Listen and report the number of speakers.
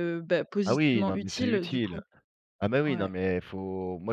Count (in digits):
2